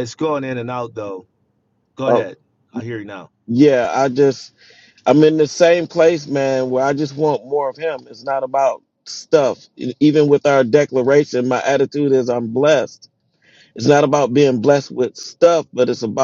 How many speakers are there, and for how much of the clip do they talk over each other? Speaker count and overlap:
2, about 1%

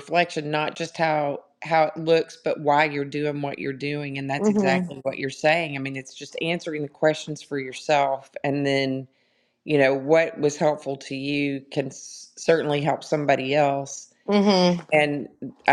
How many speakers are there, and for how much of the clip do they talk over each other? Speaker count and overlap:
2, about 3%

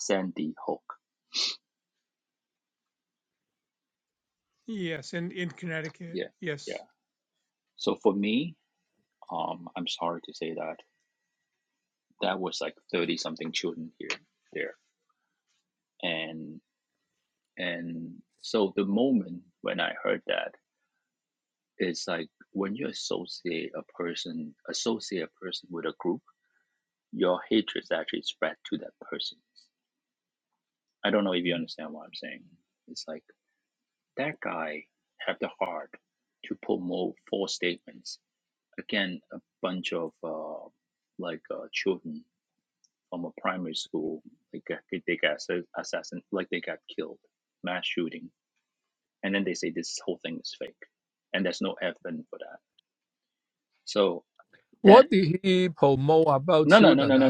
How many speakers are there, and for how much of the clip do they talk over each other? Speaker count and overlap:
3, about 2%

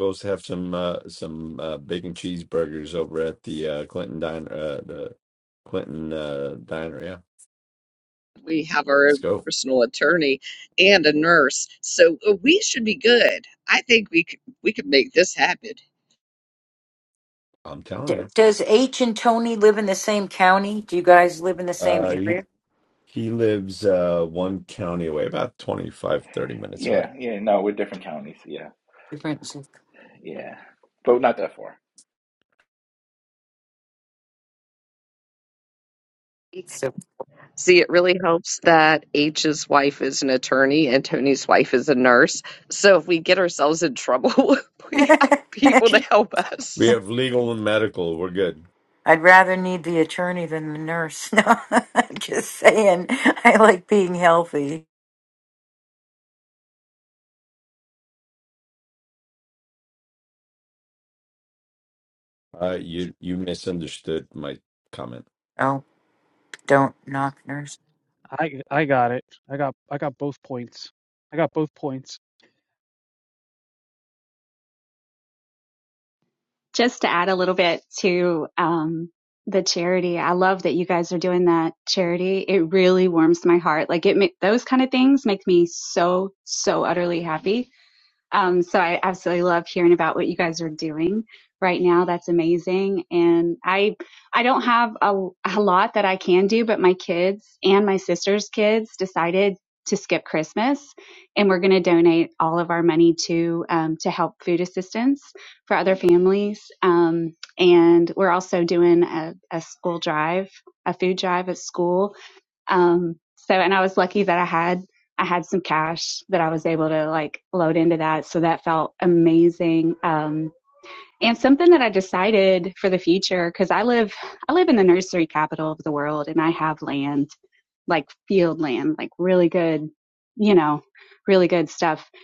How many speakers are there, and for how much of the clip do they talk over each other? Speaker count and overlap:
6, about 1%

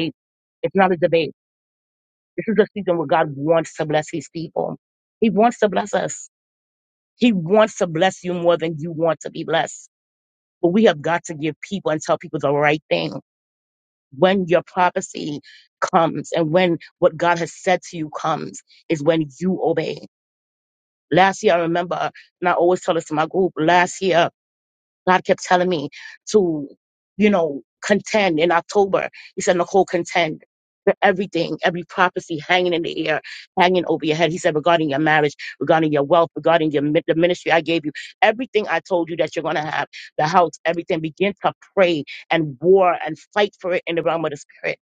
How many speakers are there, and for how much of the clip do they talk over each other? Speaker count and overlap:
1, no overlap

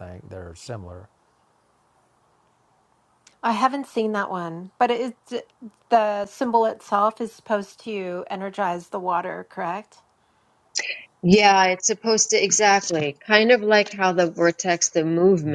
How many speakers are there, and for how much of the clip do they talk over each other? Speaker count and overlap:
3, no overlap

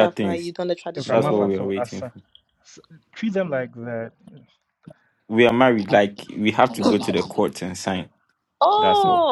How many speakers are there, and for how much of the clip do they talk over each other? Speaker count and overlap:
3, about 20%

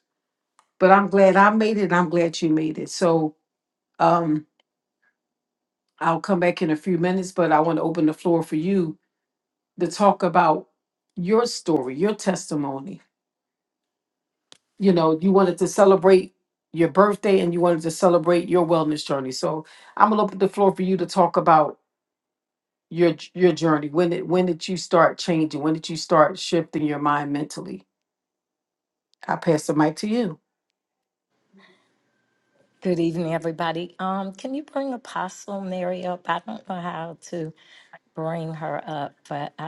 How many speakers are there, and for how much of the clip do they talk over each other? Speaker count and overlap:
2, no overlap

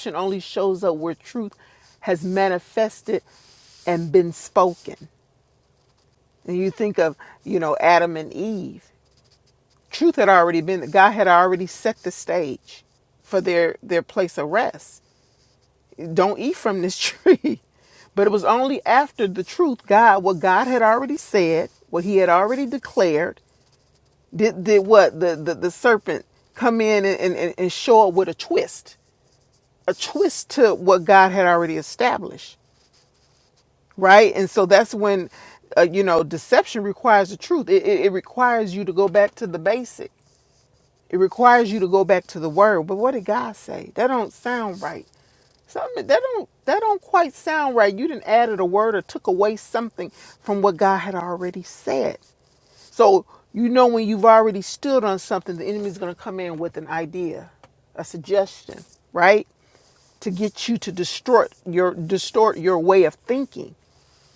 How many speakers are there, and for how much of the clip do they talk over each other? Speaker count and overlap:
1, no overlap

